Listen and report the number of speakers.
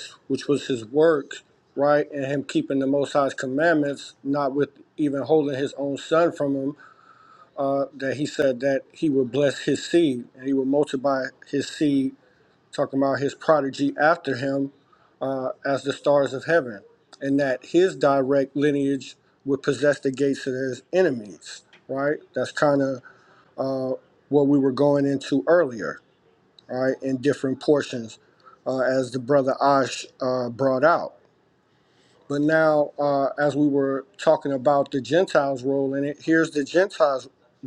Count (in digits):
1